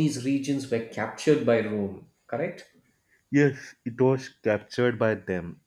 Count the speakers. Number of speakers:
two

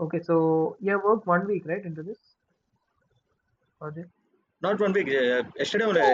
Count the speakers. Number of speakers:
two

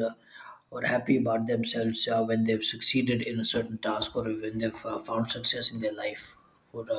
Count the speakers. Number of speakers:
one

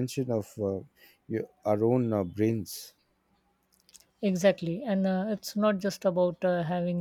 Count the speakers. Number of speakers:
two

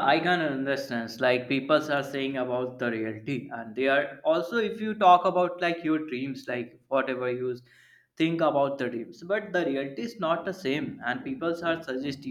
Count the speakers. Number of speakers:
one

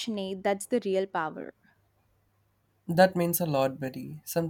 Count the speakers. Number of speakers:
two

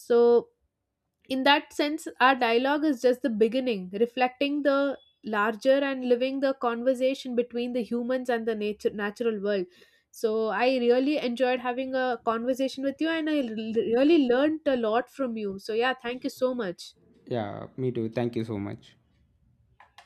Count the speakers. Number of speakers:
two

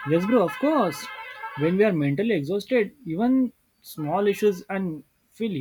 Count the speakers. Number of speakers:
one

